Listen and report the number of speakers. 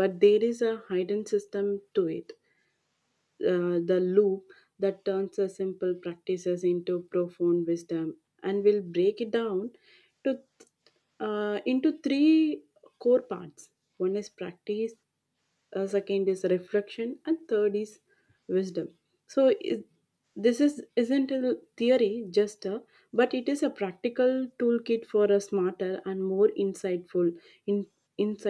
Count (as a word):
one